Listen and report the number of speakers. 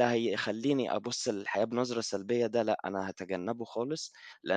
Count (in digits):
1